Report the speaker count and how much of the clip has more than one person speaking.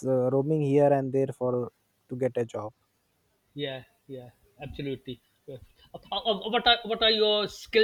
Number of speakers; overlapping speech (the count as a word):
two, no overlap